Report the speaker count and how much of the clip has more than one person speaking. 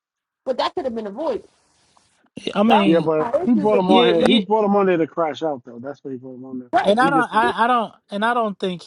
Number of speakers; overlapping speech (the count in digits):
3, about 27%